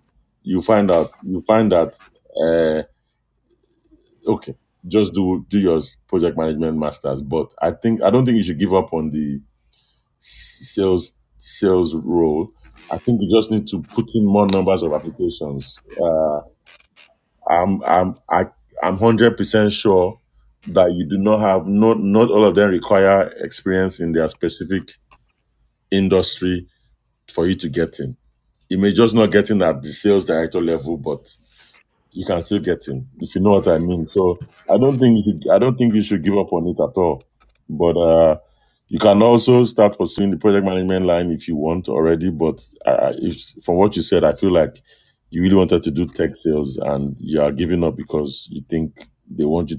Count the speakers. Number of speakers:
1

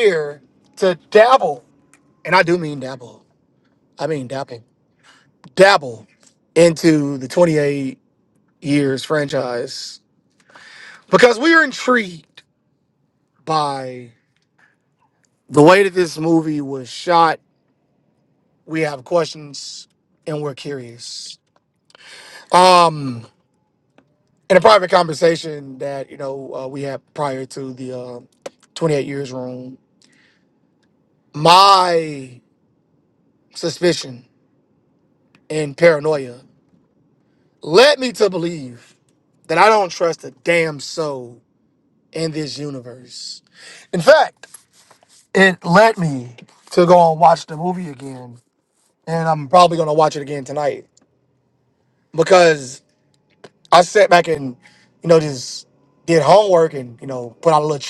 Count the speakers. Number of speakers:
1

